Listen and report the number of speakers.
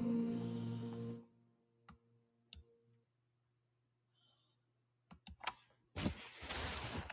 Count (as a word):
zero